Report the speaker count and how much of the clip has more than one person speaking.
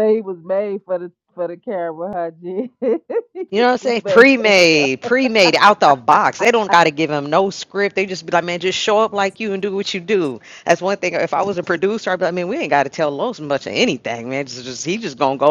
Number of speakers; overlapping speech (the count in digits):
2, about 6%